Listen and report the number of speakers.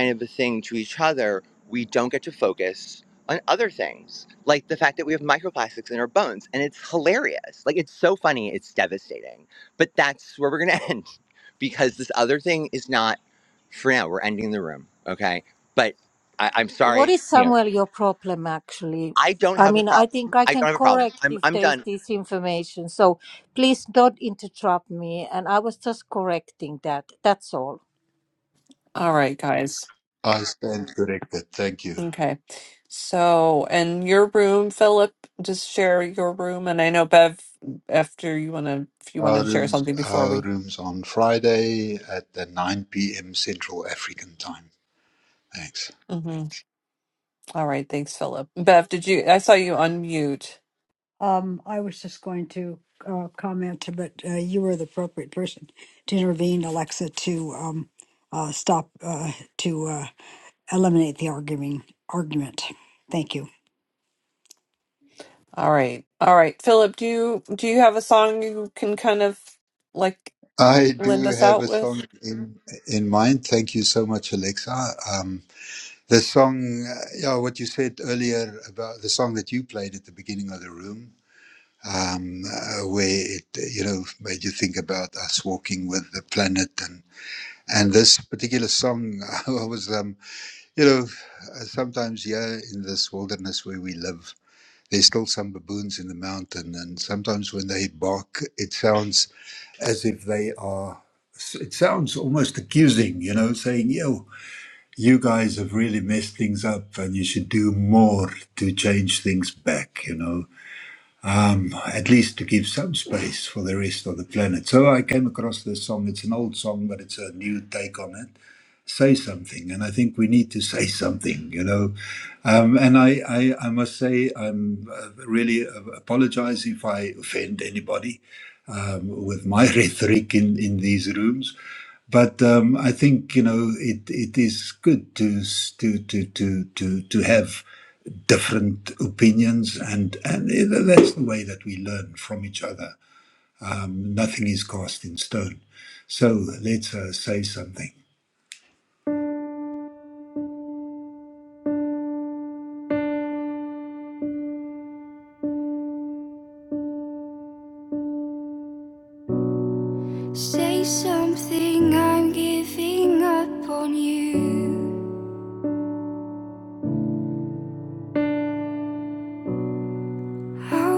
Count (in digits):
6